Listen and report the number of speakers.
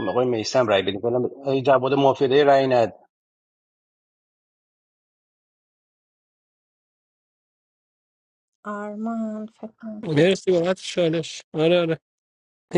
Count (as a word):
three